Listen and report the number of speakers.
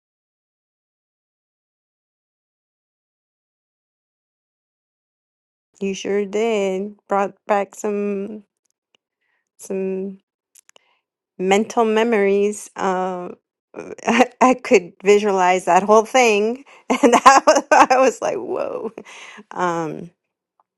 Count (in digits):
1